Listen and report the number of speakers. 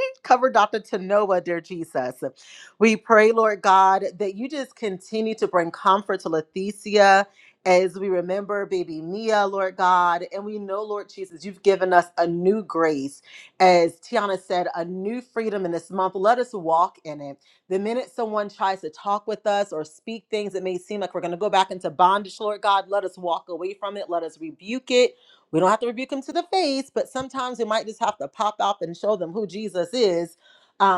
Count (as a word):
one